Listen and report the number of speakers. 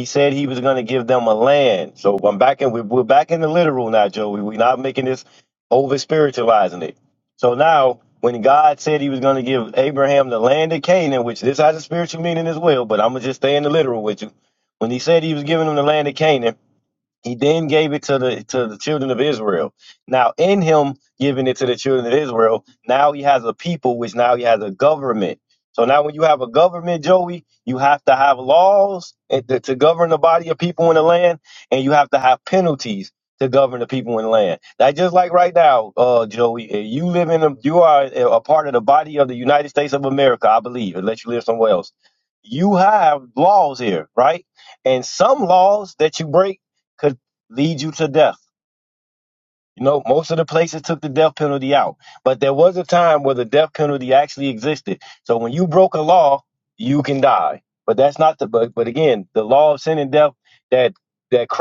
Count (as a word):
one